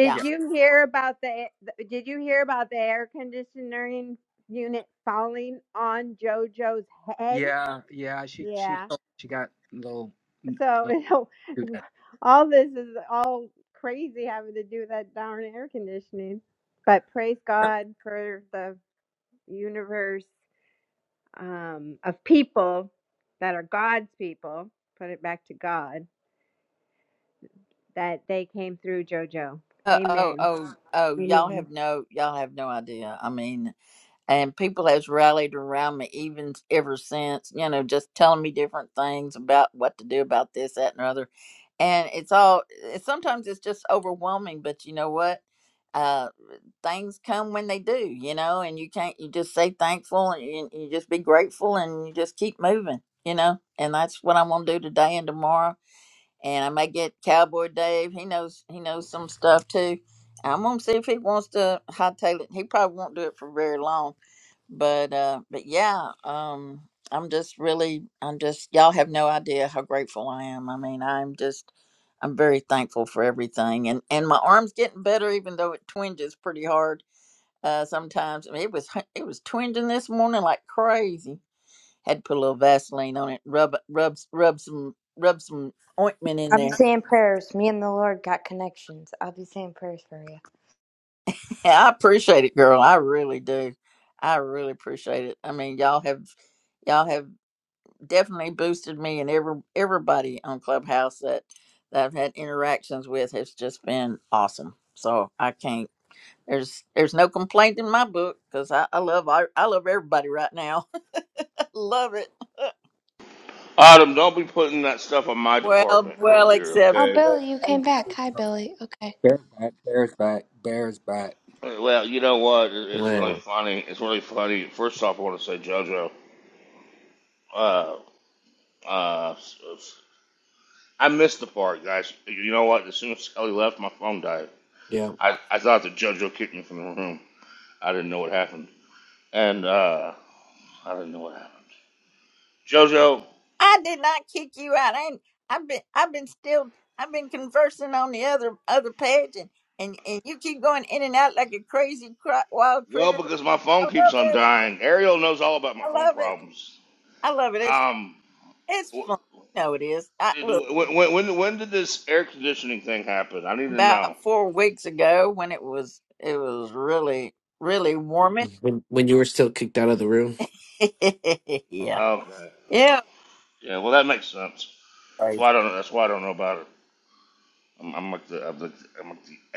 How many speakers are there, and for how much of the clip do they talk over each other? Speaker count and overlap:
6, about 4%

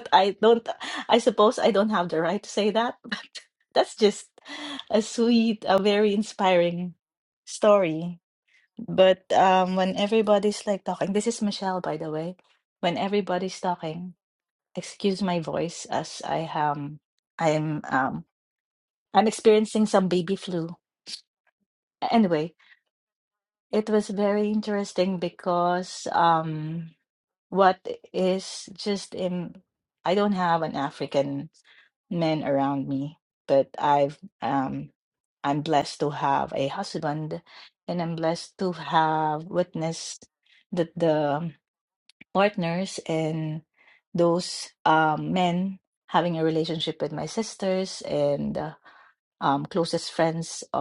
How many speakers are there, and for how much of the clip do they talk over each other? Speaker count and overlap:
1, no overlap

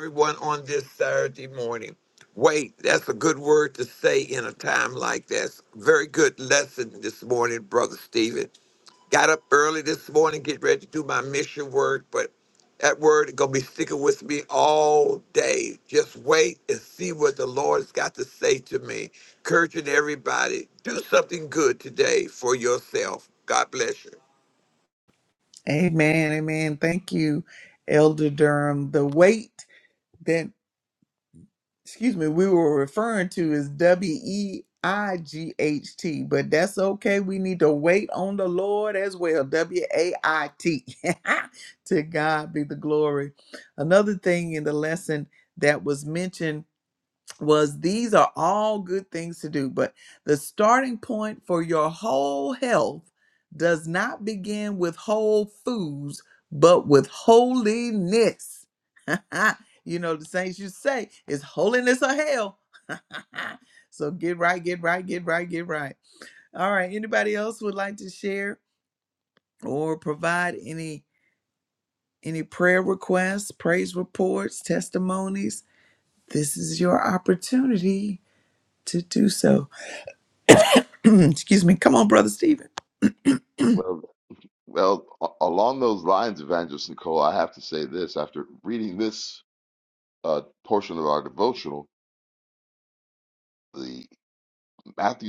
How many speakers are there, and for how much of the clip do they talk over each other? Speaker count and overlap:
3, no overlap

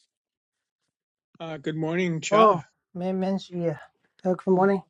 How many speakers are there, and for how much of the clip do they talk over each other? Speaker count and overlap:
2, about 6%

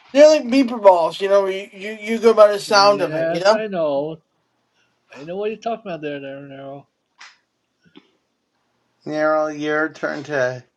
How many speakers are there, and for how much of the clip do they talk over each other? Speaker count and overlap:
3, about 8%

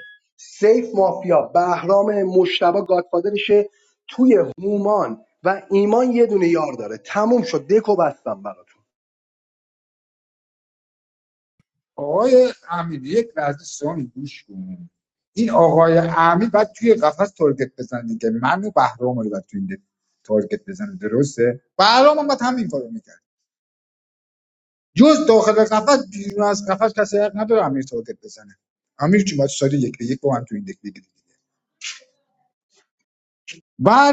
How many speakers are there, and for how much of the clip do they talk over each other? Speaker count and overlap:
2, no overlap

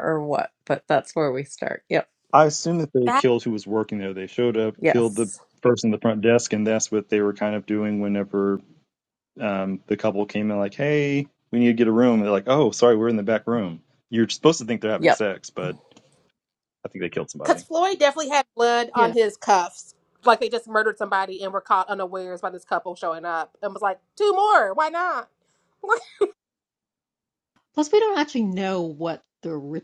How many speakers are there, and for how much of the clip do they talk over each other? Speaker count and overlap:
4, about 2%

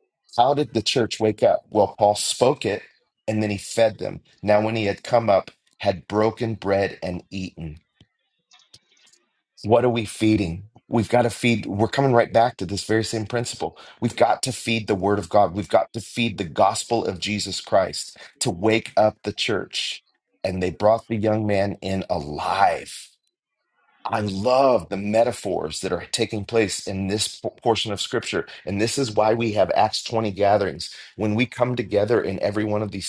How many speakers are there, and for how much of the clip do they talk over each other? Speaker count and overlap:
1, no overlap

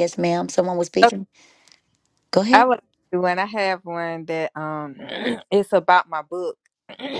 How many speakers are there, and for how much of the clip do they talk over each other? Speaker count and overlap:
2, about 3%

